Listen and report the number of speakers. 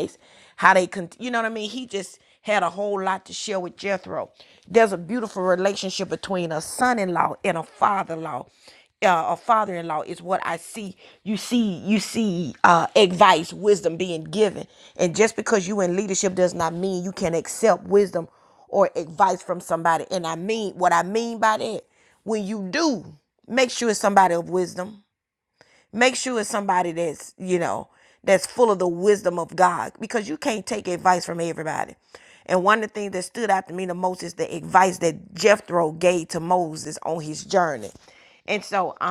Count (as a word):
one